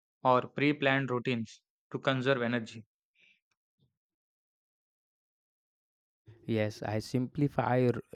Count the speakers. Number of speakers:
2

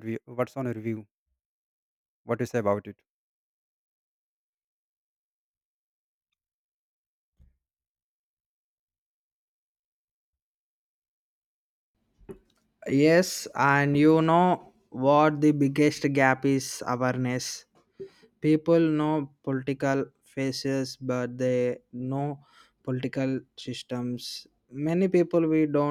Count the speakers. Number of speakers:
2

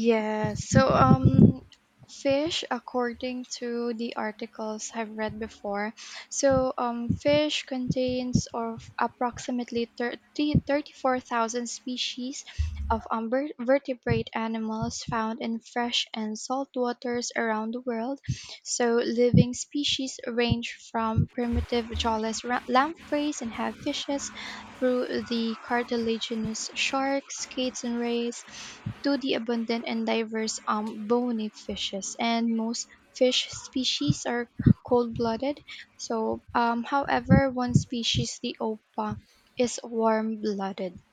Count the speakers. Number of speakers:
1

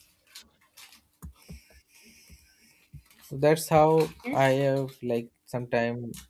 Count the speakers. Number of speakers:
1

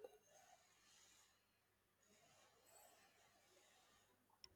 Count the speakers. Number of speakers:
0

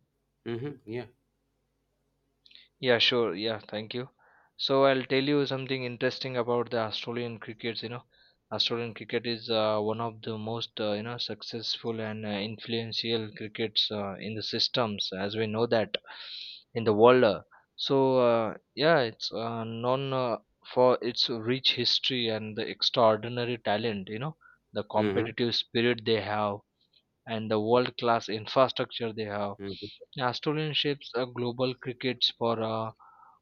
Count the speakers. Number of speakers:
2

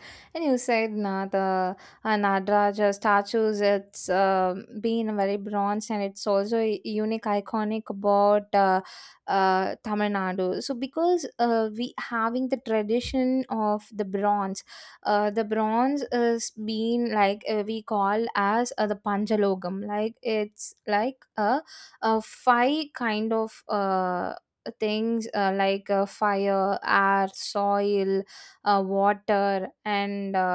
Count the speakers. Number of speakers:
1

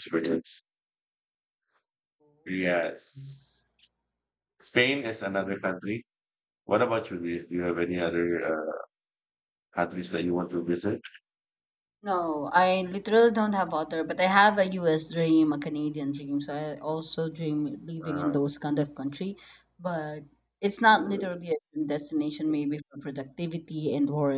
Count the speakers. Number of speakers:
2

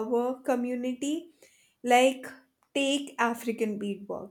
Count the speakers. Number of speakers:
1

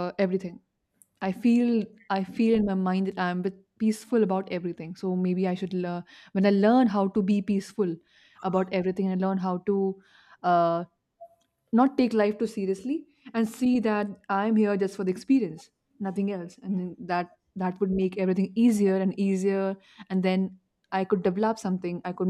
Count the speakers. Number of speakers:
1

